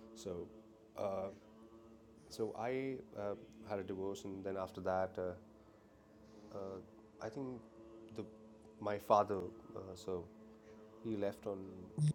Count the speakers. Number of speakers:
1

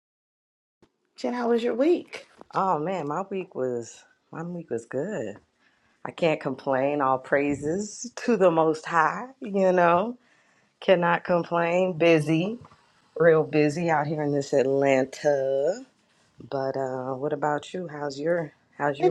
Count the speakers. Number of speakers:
2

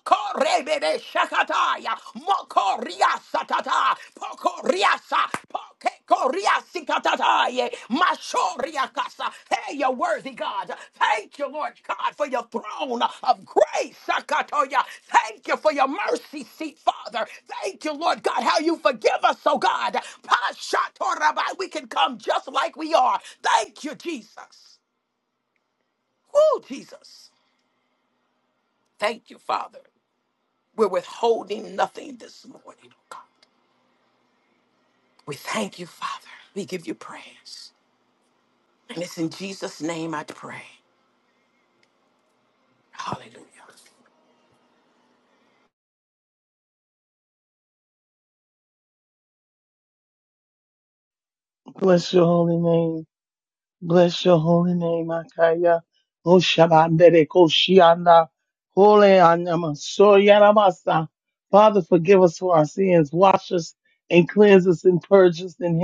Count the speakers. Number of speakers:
2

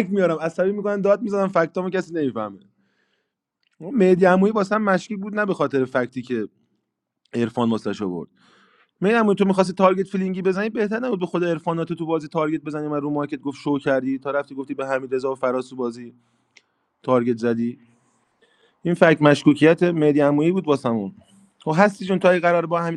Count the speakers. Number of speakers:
1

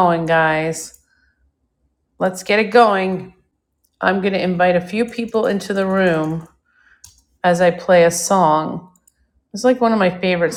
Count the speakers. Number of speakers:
1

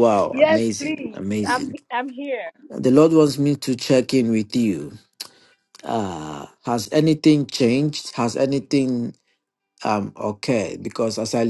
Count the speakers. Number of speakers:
2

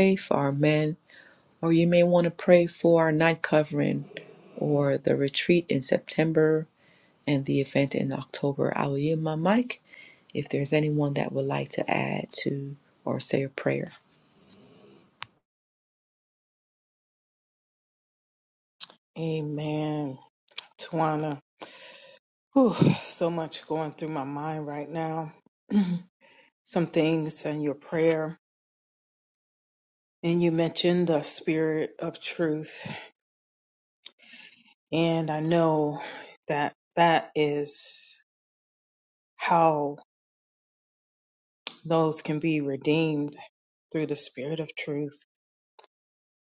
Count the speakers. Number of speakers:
2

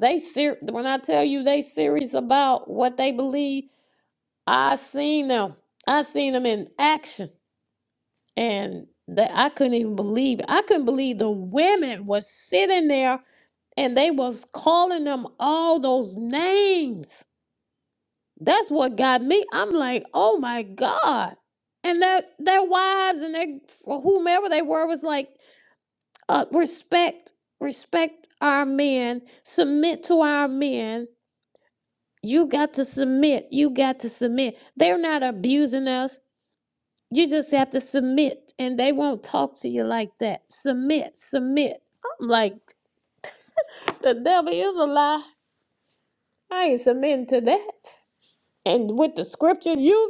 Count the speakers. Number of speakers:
1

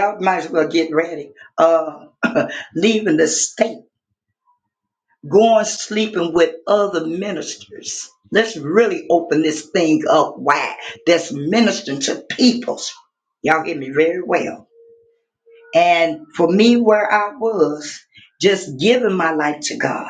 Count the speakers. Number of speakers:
1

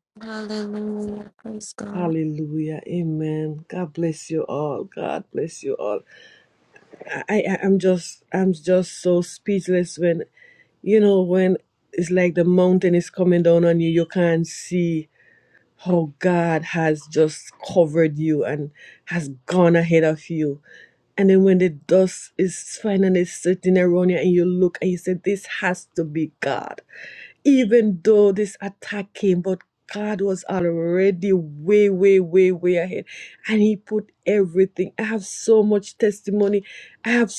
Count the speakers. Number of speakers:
2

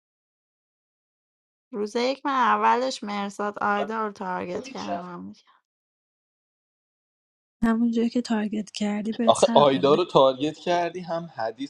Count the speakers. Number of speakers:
3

